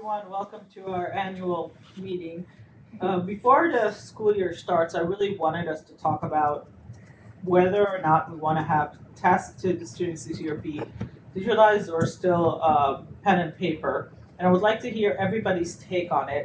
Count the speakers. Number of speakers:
1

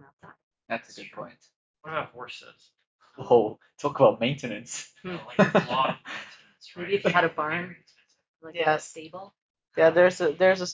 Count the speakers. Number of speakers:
4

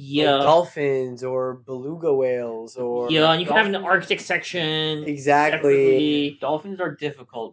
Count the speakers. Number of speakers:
3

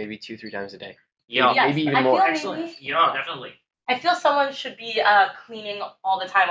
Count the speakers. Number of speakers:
3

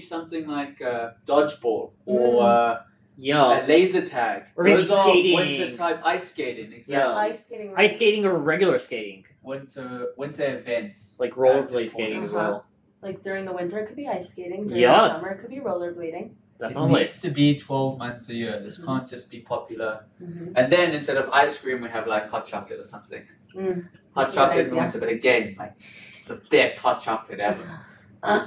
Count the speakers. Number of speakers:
3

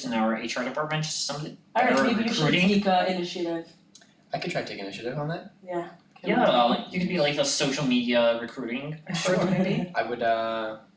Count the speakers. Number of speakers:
3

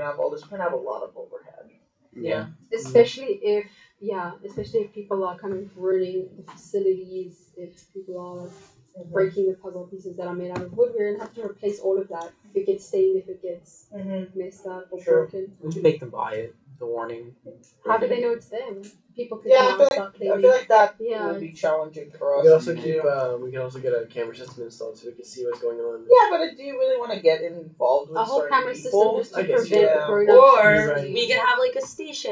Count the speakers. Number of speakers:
5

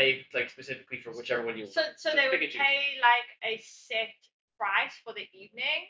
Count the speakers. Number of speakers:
2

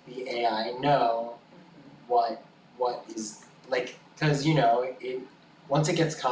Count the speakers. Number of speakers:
1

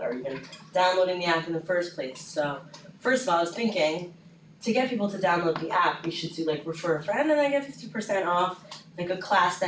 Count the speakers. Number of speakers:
1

